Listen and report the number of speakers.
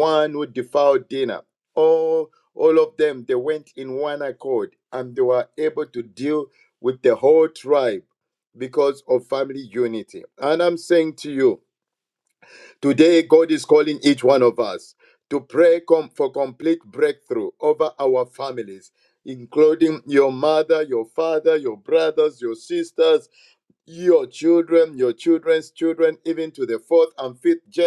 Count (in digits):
1